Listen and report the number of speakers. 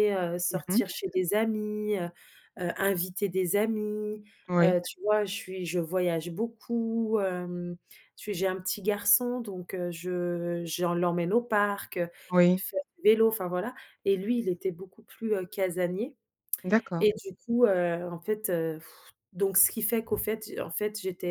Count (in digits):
2